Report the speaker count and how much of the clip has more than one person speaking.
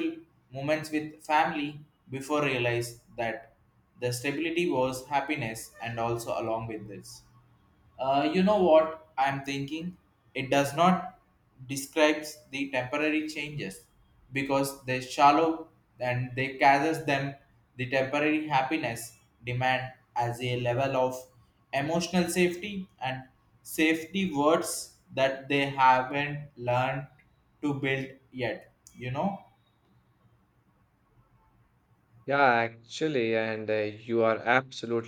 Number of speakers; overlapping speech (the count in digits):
2, no overlap